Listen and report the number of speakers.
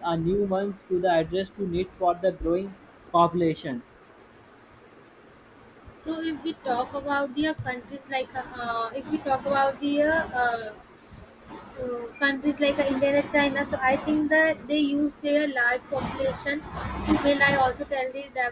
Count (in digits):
2